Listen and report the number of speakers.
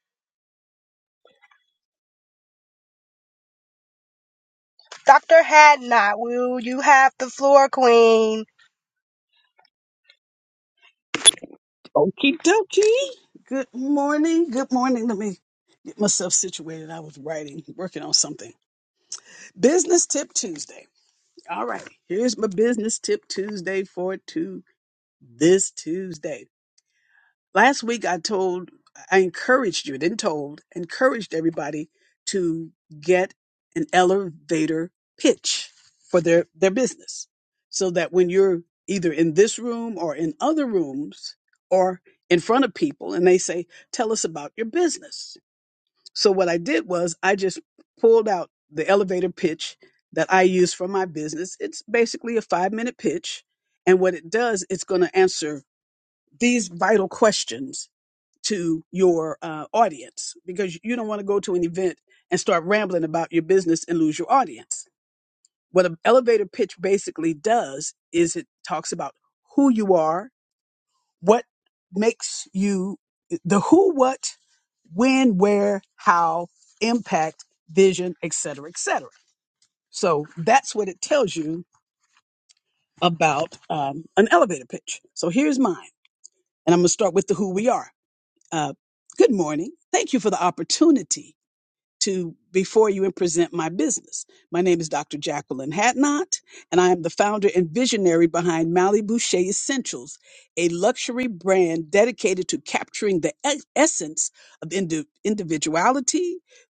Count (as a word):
two